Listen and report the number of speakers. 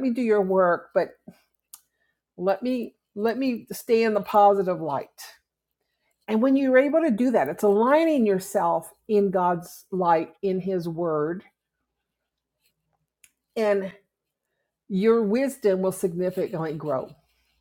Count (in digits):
1